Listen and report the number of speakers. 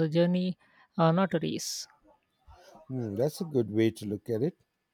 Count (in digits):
2